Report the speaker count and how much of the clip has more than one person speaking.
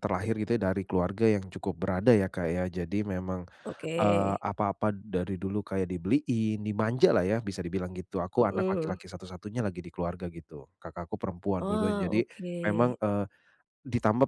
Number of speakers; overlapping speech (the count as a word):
two, about 16%